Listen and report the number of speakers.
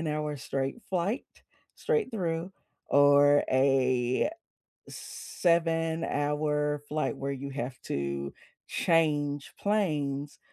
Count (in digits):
1